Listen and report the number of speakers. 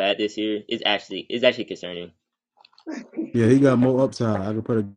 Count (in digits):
2